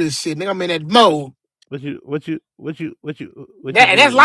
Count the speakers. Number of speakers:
two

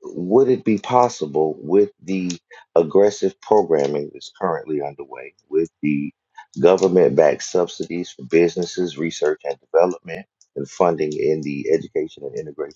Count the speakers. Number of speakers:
one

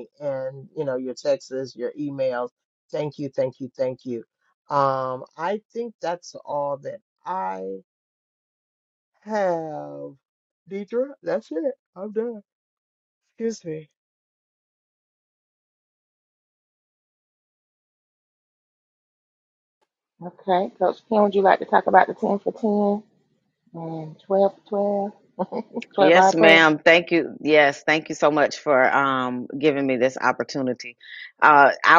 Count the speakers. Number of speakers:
three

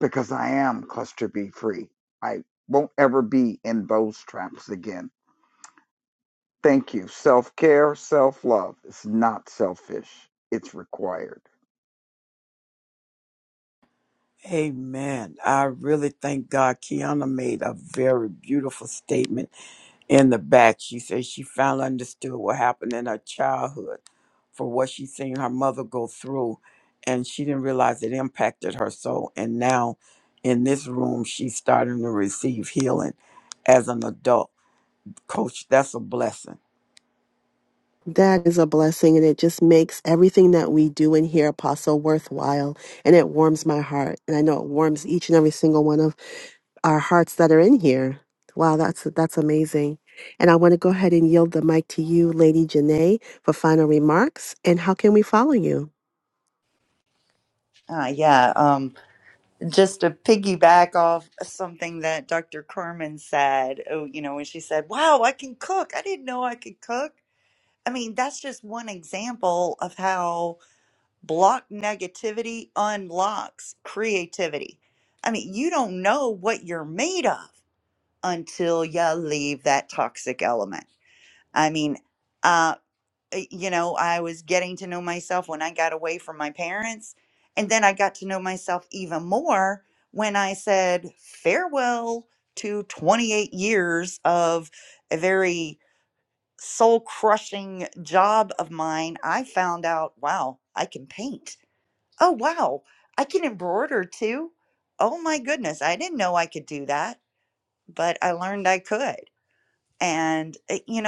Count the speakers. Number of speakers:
four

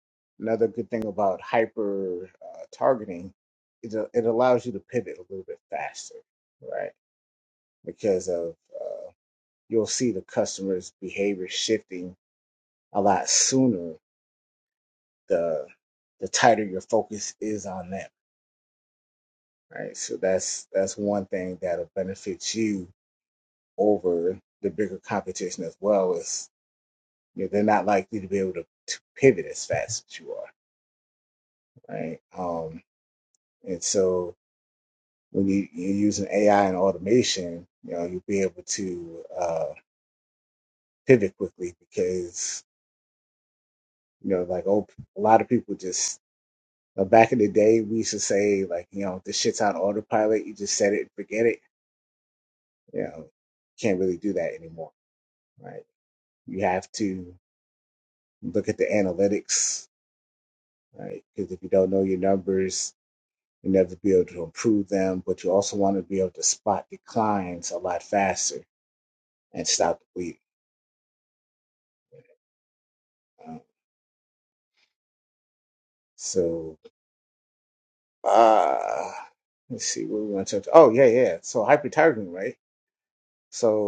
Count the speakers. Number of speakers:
one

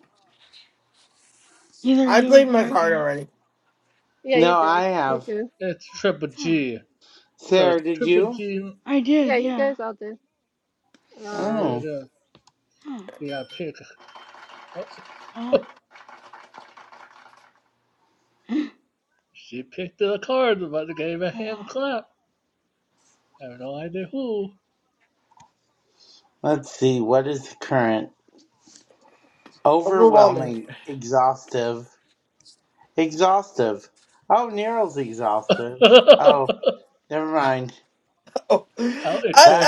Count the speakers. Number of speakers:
five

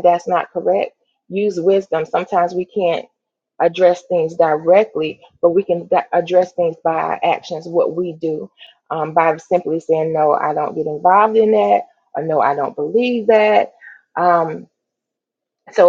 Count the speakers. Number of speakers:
one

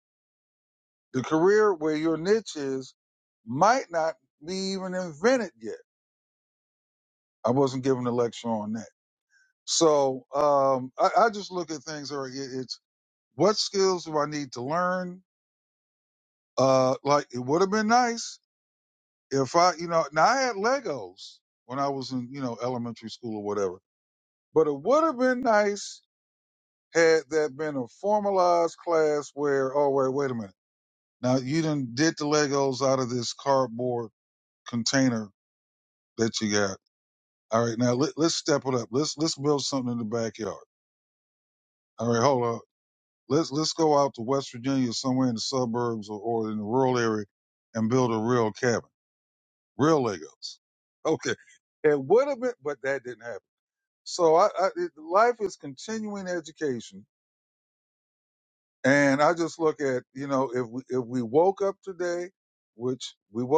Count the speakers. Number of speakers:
one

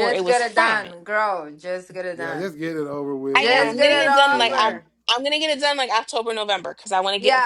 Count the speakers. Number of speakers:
three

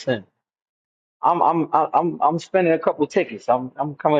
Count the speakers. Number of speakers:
one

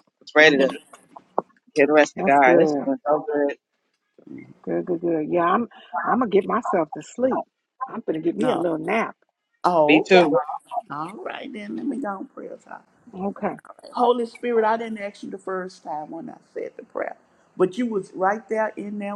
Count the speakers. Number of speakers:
three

